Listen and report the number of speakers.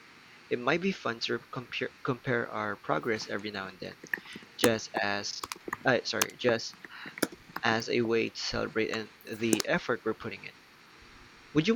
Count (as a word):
one